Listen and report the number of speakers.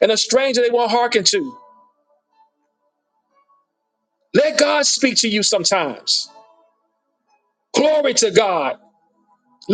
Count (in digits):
1